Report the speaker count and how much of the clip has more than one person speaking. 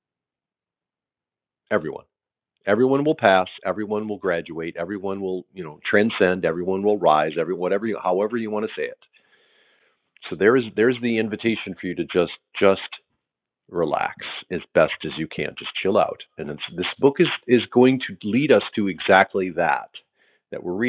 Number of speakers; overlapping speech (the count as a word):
one, no overlap